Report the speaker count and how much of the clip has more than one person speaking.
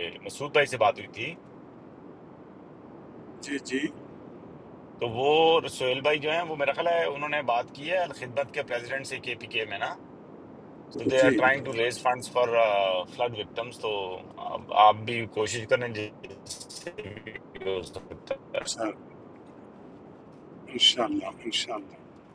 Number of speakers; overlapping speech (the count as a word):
two, about 4%